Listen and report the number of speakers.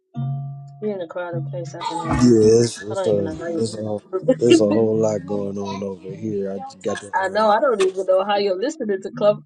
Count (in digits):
2